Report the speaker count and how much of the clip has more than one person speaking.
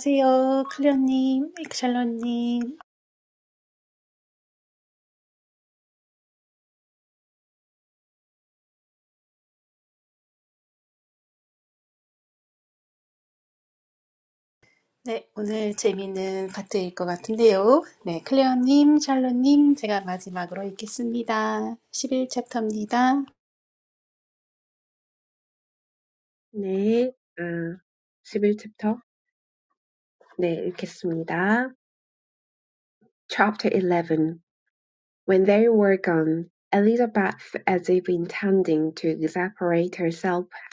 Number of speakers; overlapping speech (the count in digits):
2, no overlap